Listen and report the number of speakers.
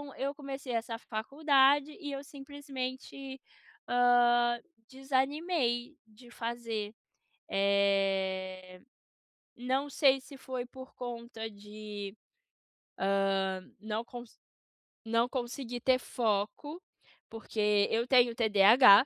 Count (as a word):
one